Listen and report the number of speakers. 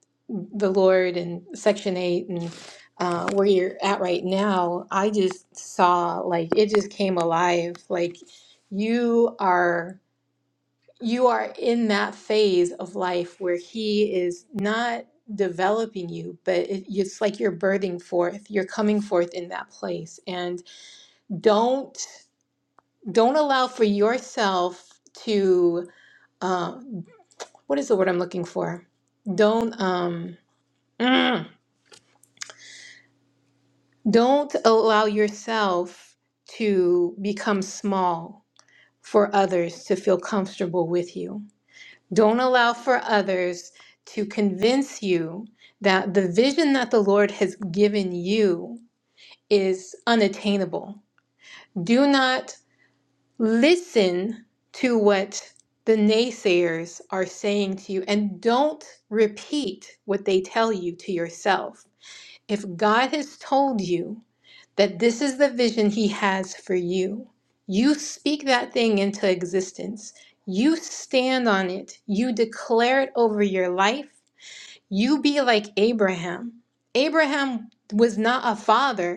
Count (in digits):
1